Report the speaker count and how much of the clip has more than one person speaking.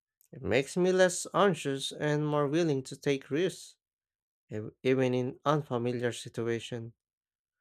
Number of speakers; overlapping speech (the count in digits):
1, no overlap